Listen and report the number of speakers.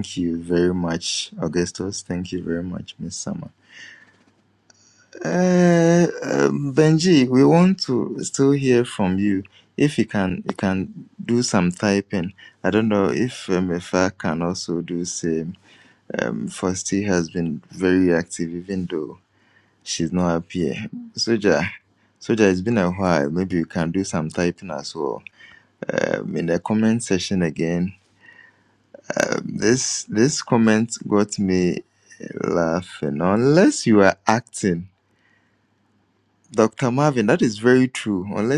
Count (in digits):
1